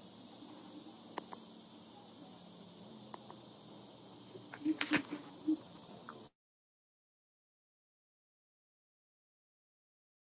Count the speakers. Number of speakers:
0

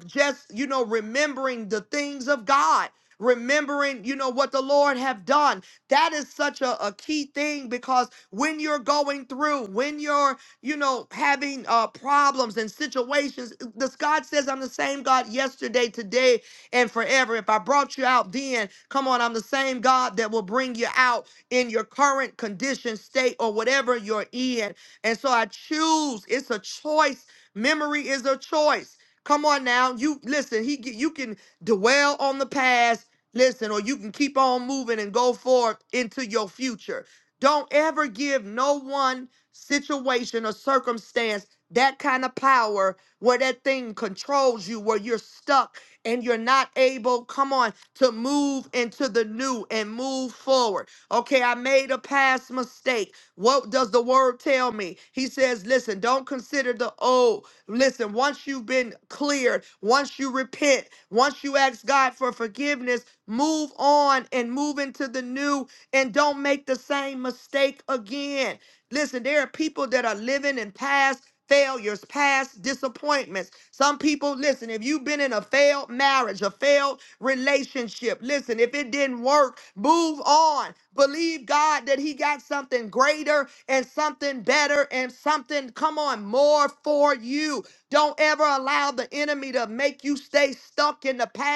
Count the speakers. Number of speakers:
1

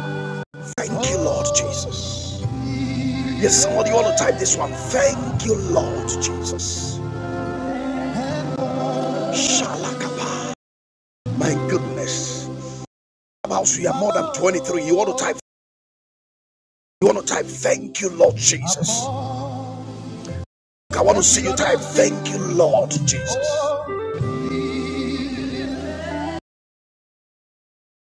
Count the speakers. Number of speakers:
1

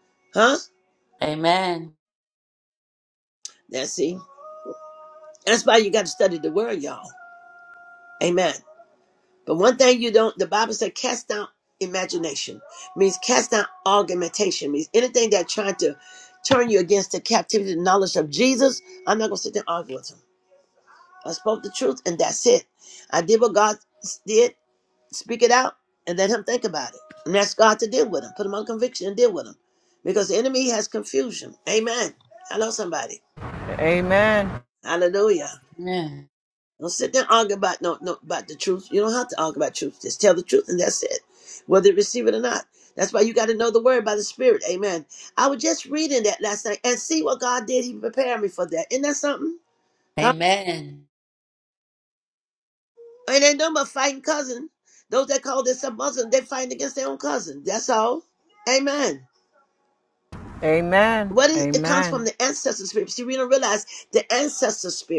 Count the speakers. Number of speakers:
3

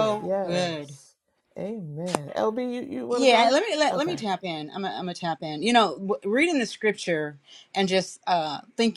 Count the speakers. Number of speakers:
2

